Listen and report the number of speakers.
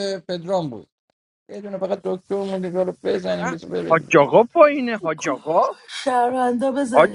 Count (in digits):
3